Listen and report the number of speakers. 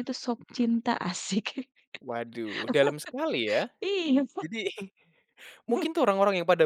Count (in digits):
2